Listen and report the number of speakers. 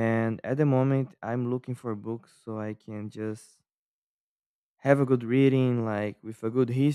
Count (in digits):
1